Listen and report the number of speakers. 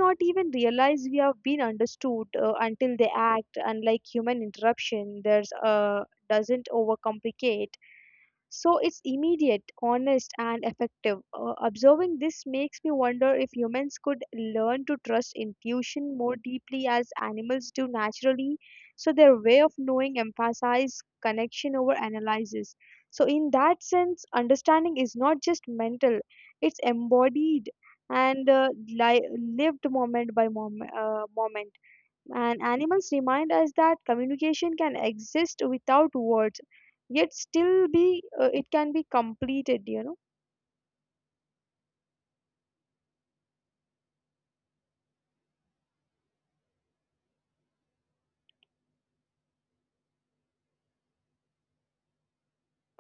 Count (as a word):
one